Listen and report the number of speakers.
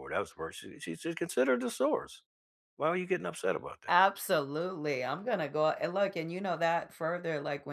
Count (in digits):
2